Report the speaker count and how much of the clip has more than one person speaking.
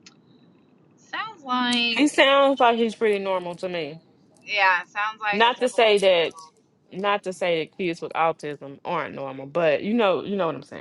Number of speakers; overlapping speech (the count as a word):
two, about 10%